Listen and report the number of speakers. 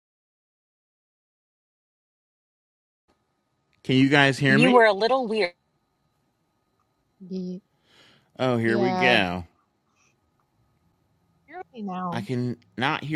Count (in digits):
3